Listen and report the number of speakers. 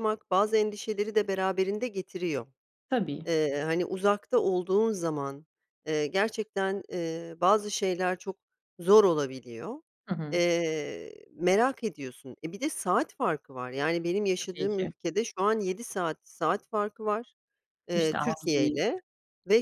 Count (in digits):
2